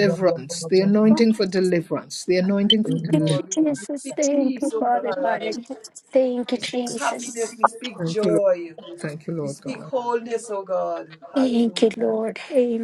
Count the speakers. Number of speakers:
three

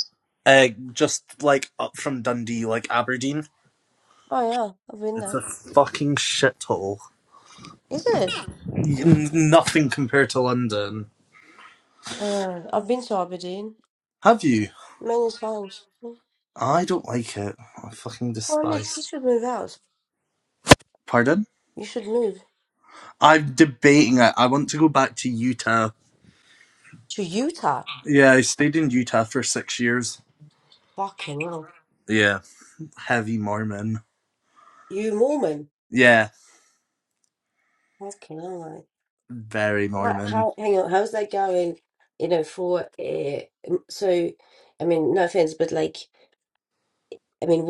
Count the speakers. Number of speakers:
two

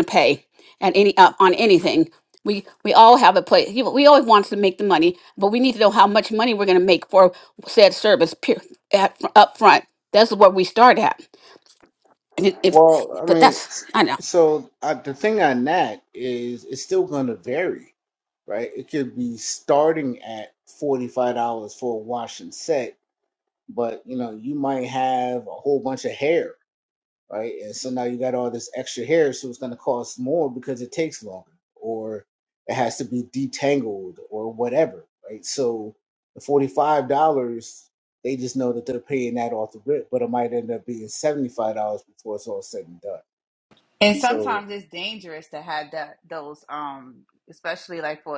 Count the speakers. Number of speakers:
three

